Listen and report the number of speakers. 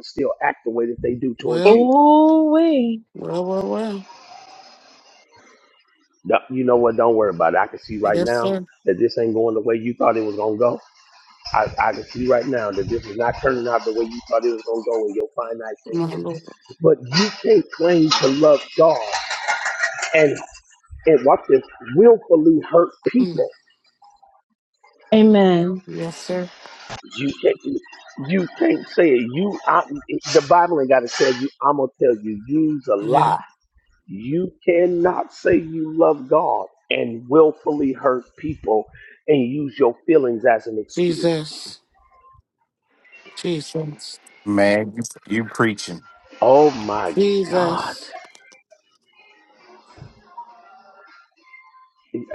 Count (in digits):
4